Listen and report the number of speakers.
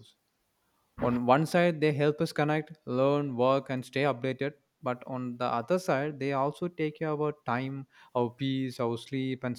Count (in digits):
1